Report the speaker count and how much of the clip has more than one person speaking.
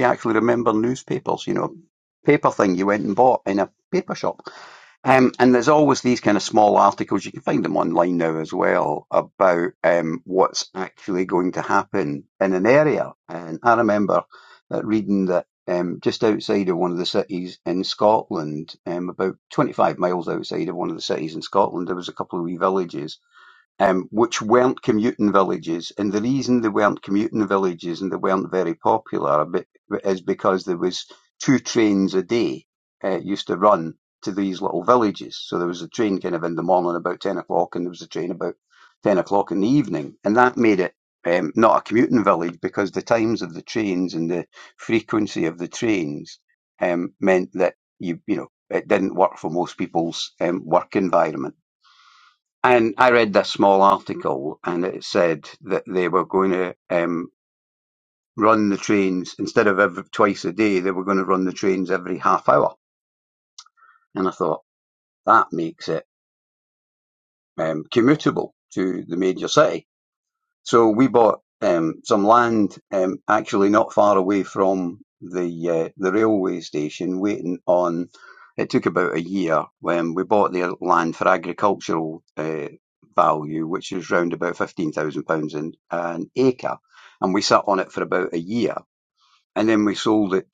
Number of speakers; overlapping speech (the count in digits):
1, no overlap